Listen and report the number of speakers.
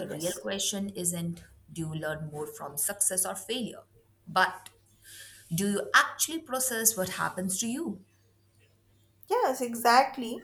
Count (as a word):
two